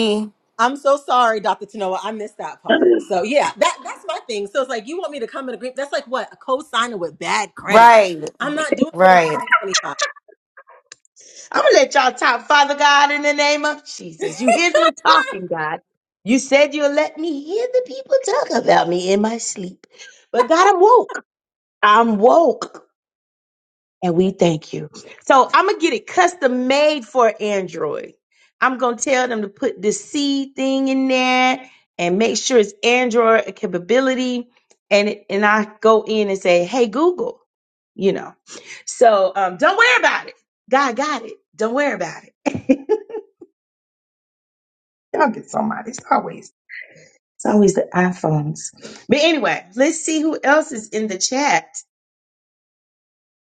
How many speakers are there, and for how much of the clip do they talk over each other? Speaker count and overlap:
3, about 1%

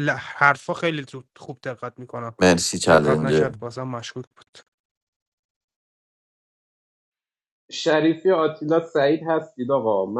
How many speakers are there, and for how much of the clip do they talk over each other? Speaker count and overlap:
3, about 6%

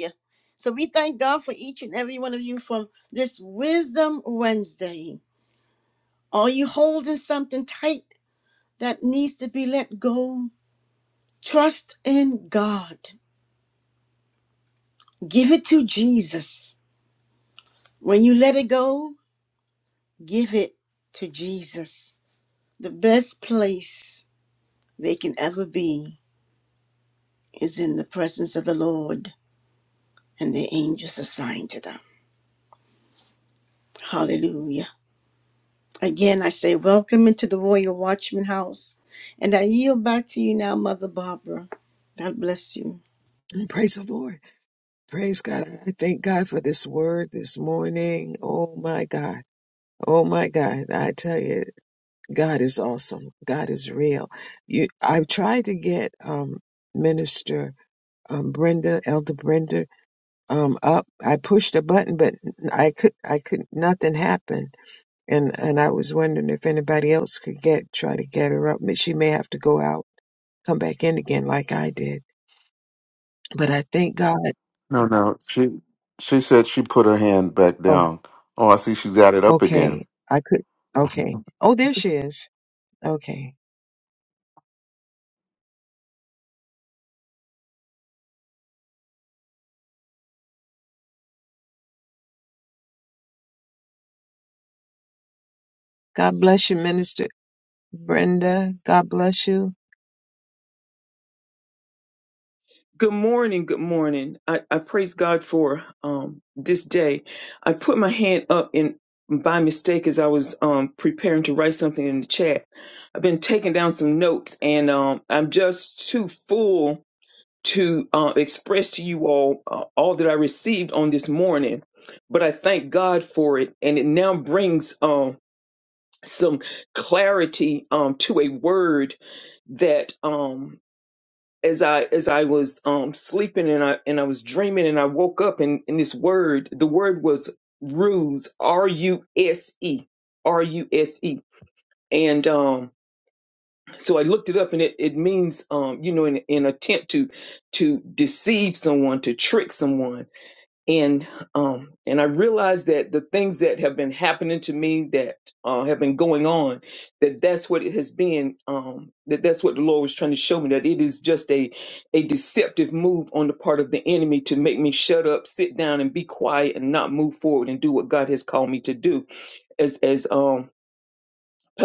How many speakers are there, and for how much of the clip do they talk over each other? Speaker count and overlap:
4, under 1%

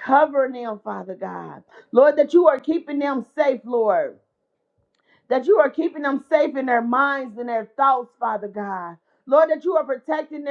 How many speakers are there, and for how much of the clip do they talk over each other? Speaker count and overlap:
1, no overlap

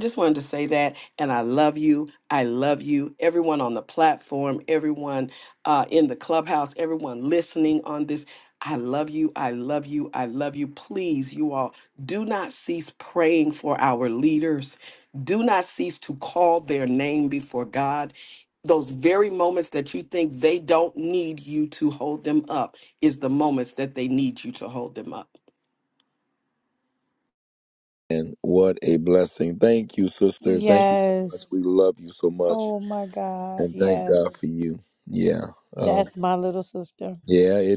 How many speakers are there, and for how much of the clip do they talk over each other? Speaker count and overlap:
3, about 5%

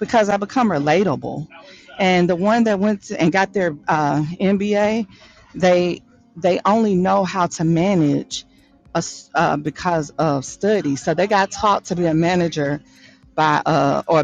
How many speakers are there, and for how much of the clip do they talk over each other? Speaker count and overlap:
1, no overlap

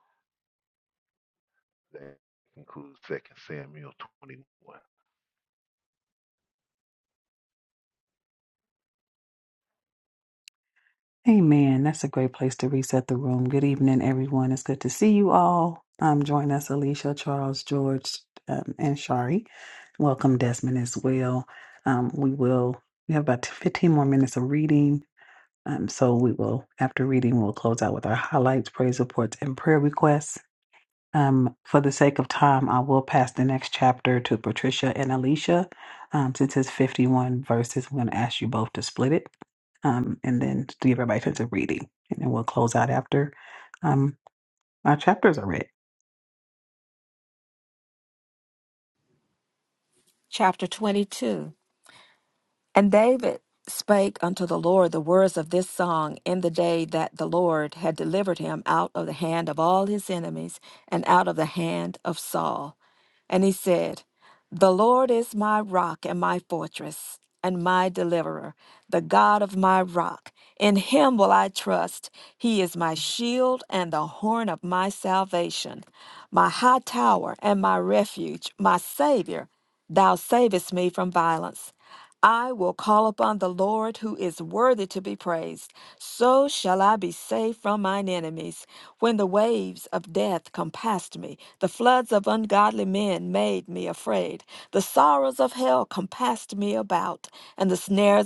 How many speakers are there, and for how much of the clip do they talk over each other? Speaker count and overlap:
3, no overlap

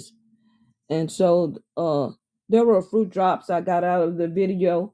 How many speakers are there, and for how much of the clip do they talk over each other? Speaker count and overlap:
1, no overlap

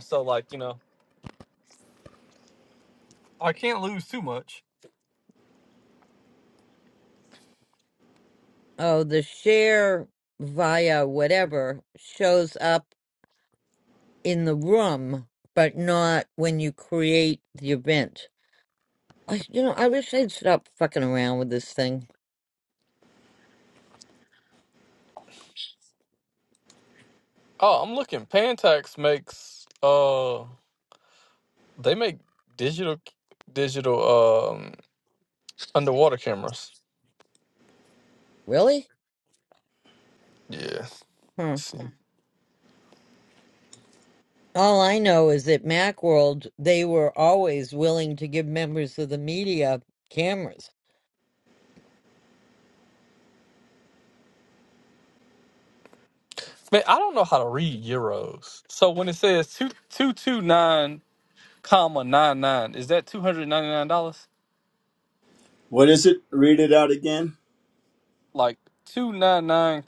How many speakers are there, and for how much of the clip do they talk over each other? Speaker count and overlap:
3, no overlap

